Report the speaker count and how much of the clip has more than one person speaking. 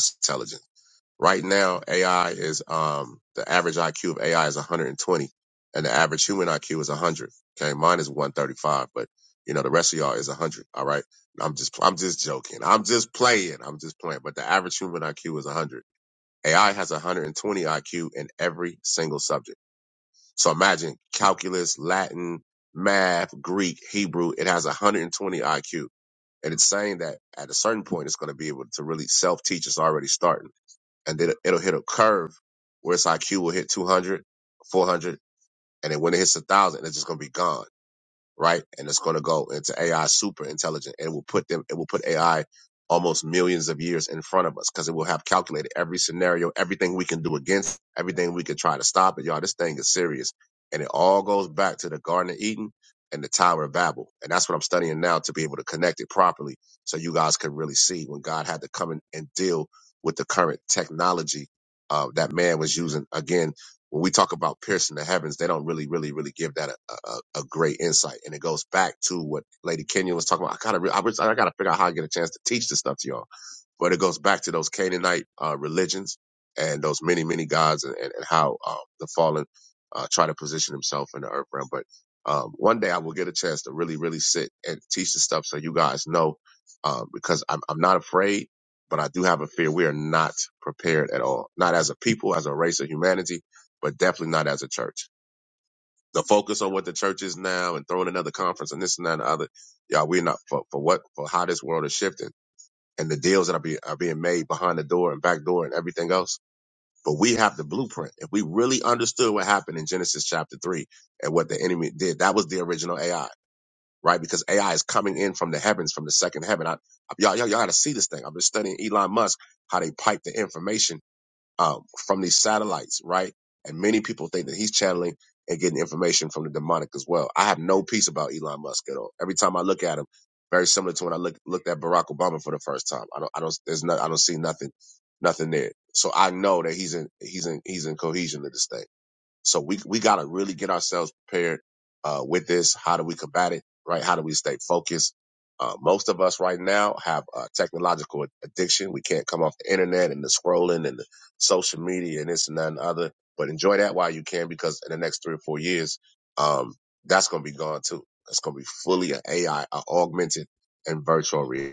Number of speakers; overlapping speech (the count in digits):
1, no overlap